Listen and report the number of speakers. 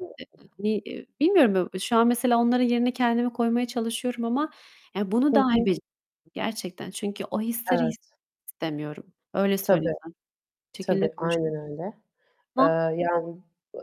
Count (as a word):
two